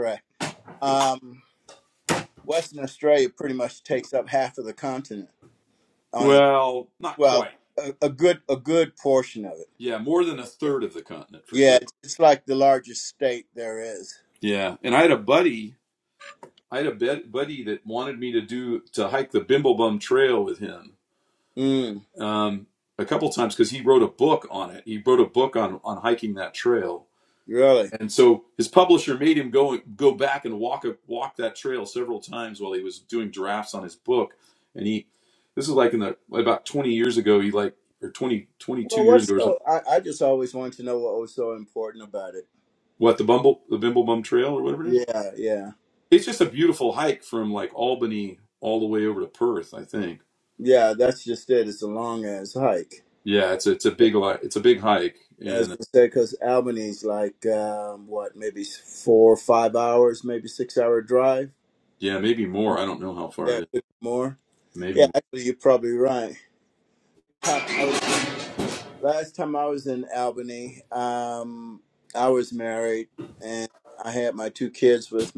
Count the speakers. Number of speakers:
2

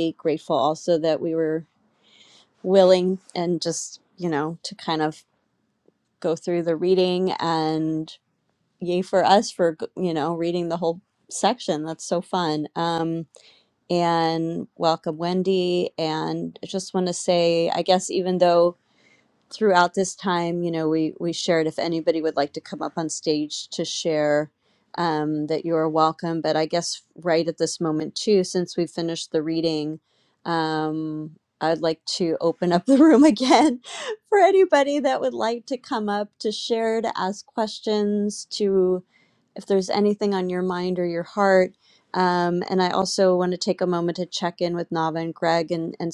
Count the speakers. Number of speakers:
1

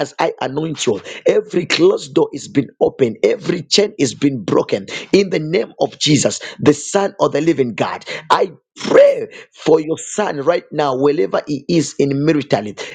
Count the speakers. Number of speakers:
1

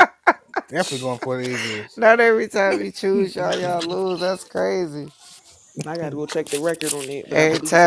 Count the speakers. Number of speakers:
3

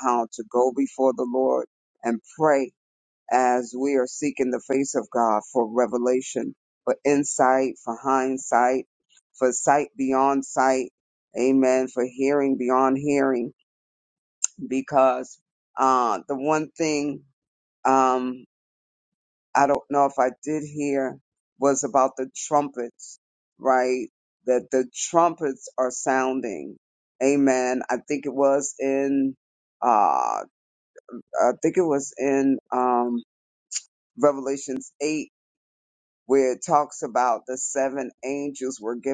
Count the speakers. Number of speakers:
1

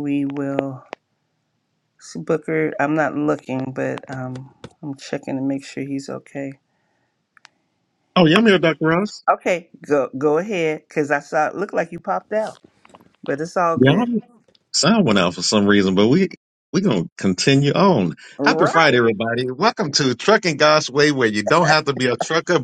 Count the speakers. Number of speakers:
2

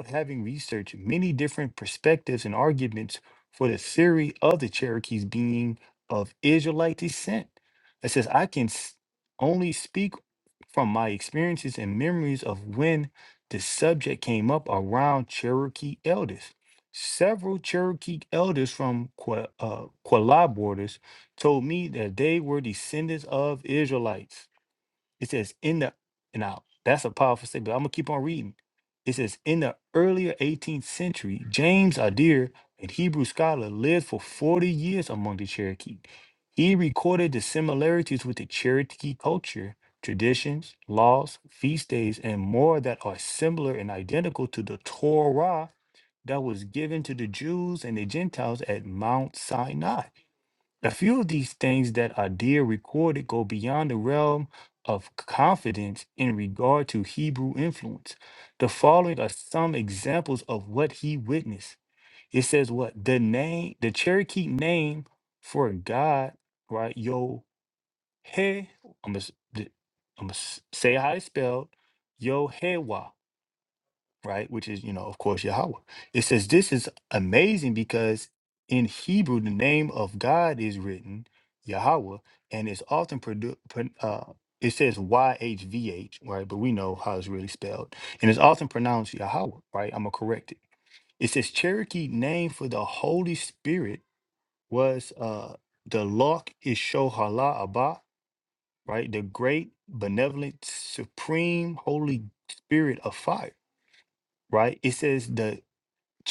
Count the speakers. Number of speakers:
1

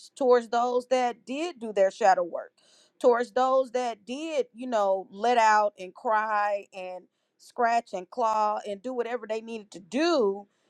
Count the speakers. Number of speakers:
1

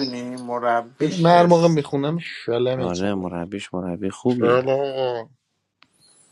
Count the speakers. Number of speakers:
3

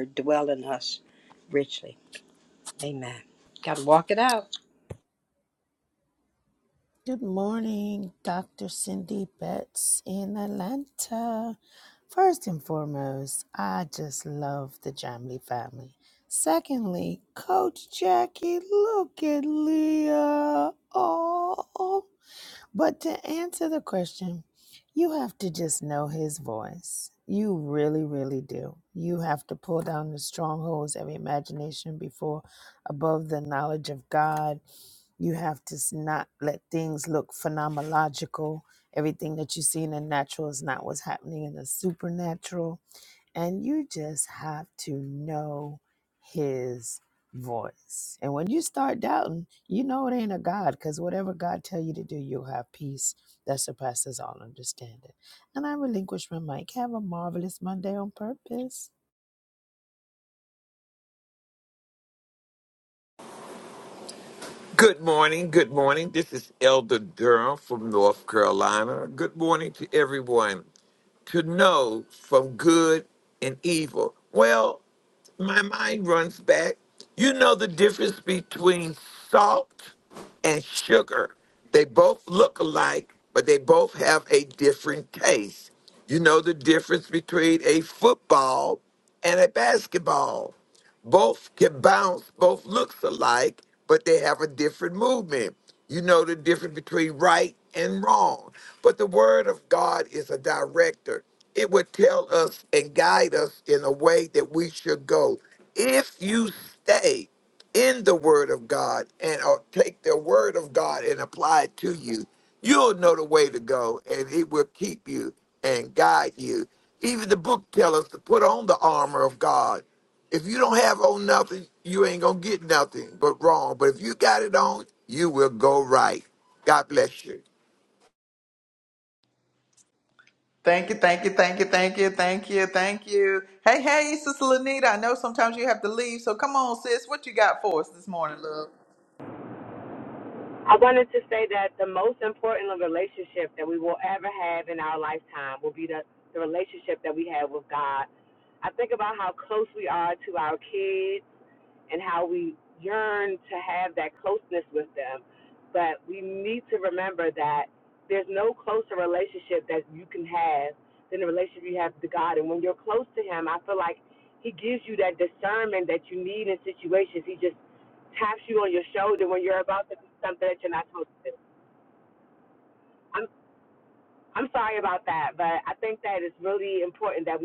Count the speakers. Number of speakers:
5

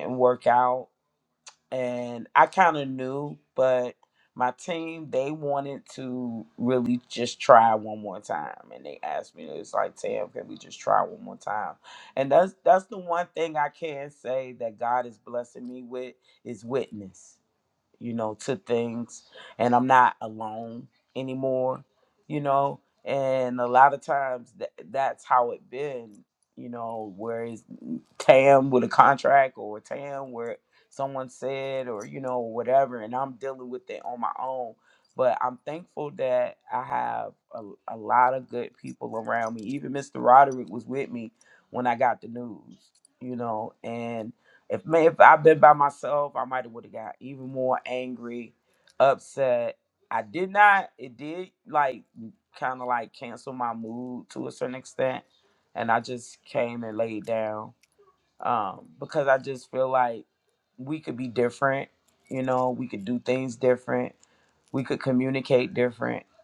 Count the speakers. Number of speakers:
1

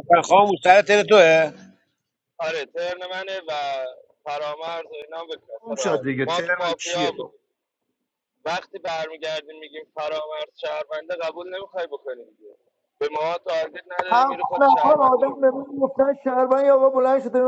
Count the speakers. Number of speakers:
4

